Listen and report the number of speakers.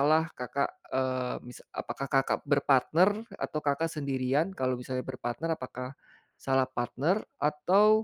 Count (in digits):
1